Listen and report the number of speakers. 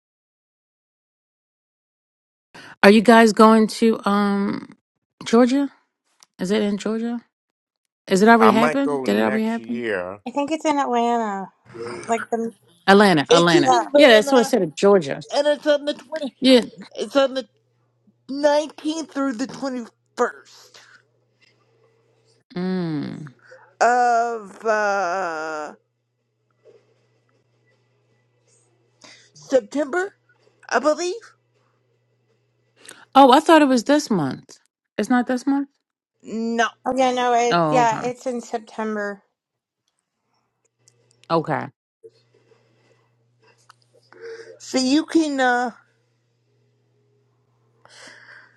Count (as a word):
four